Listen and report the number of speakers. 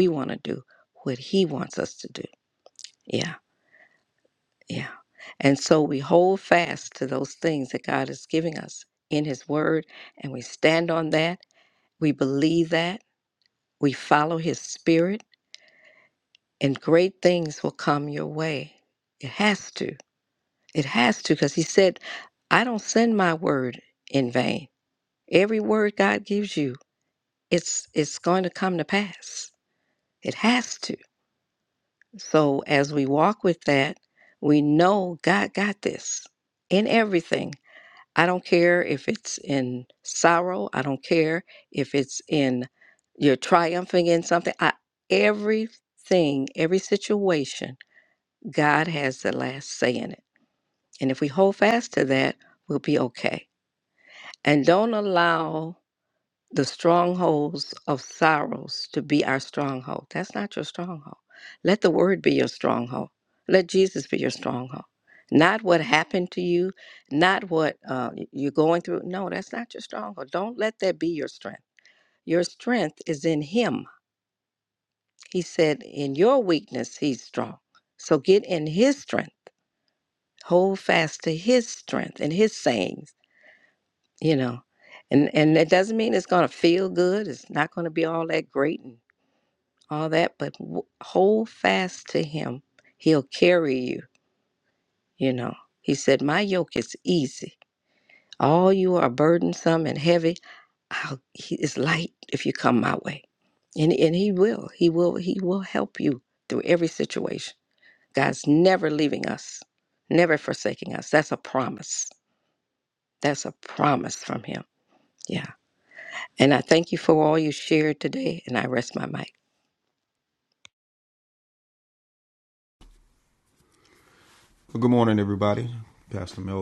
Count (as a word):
two